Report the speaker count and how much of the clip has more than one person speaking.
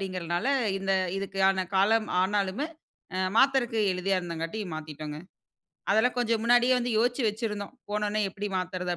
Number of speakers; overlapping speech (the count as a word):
one, no overlap